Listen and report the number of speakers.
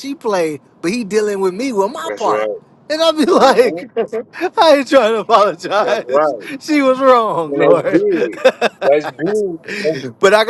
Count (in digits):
2